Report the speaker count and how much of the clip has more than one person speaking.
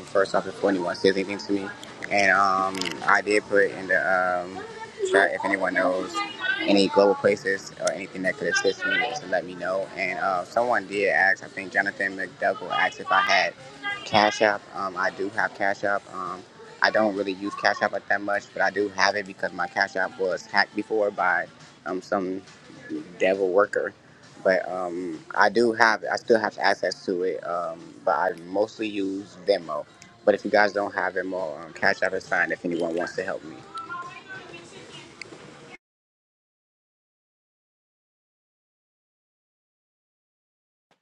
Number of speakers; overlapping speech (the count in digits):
1, no overlap